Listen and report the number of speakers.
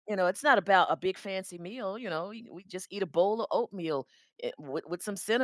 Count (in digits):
1